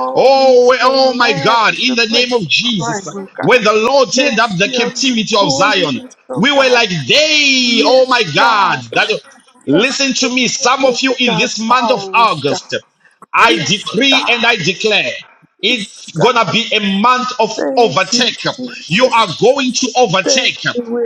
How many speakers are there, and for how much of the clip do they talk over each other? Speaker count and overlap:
2, about 56%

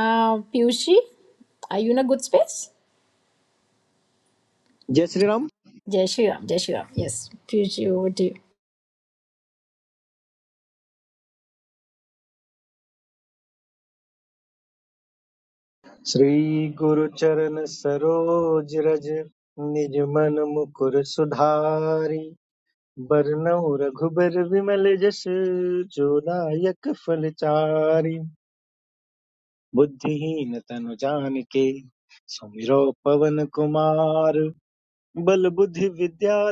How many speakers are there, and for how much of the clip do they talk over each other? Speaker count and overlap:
2, no overlap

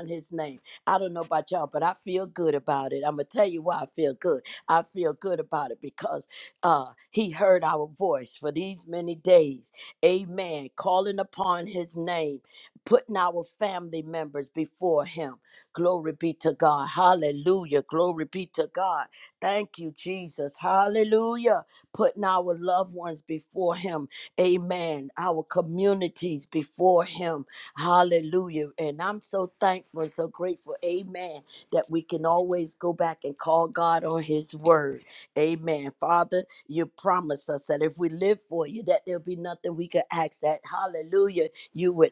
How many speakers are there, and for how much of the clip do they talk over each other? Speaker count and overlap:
1, no overlap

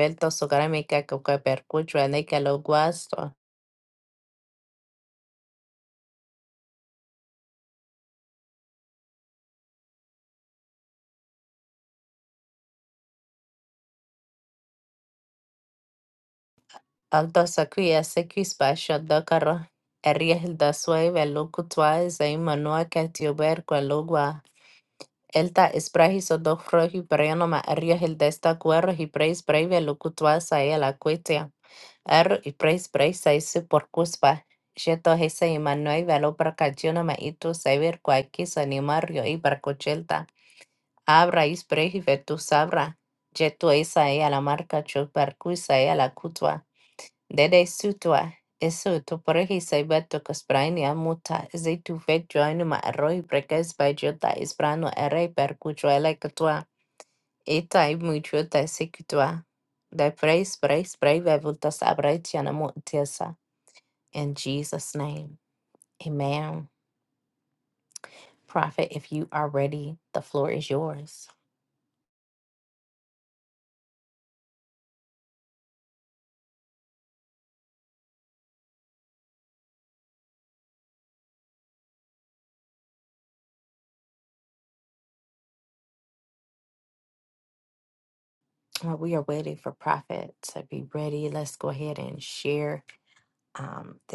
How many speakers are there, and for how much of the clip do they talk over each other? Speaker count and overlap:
1, no overlap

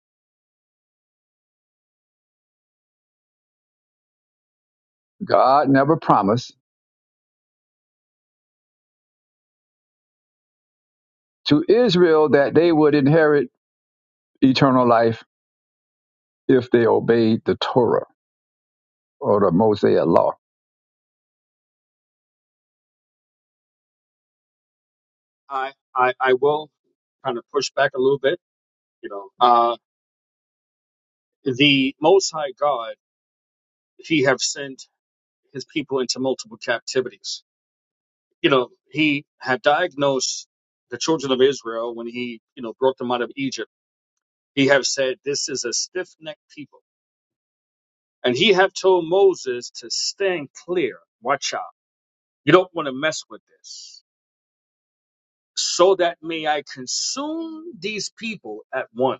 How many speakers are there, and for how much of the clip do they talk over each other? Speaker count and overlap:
2, no overlap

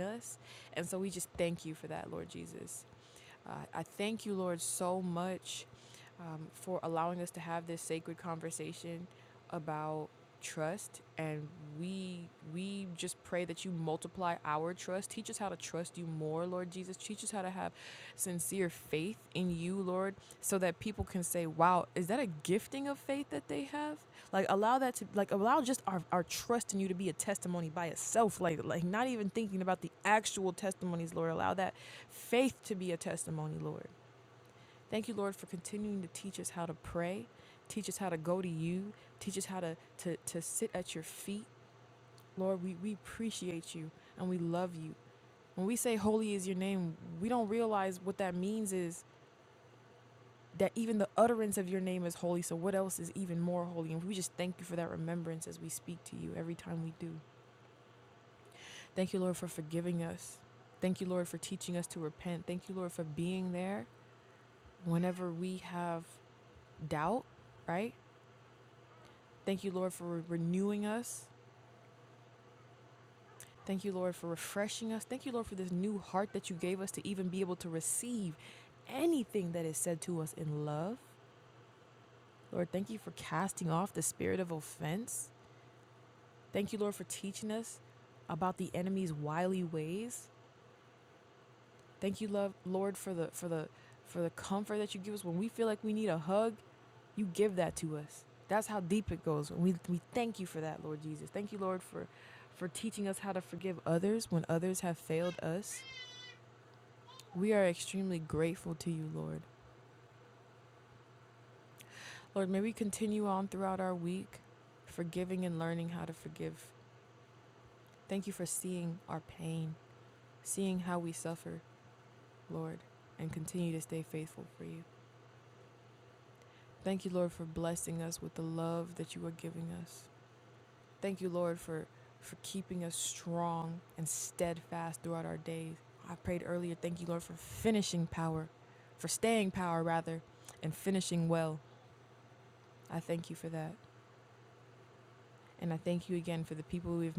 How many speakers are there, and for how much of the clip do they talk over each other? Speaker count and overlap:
1, no overlap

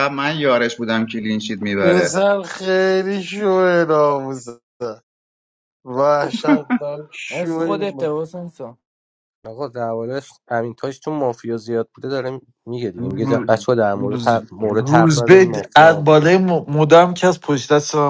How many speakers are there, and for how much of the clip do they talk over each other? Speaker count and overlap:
5, about 22%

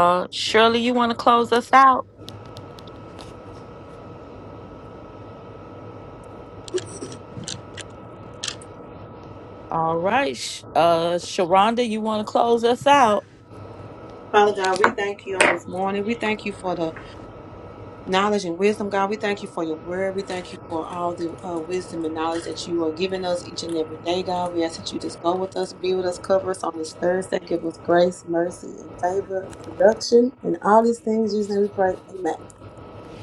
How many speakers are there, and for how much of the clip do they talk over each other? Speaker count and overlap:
2, no overlap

